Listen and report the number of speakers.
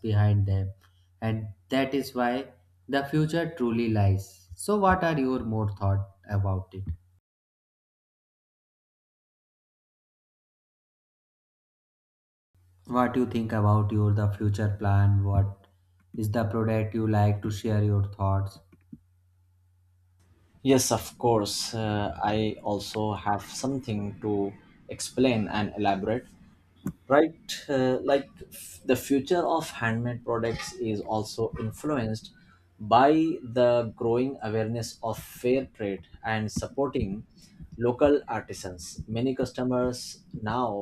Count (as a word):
two